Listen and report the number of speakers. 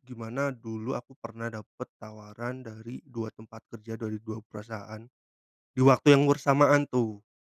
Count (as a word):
one